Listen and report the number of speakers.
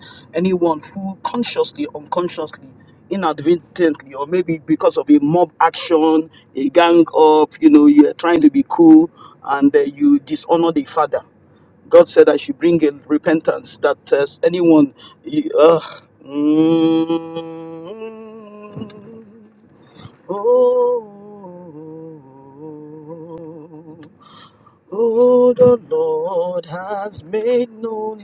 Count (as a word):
one